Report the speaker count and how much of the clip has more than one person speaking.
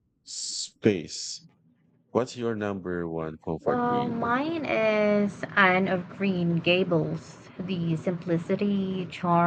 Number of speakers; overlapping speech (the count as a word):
two, about 7%